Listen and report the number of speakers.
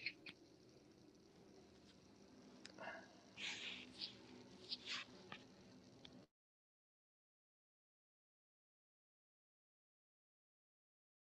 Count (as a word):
zero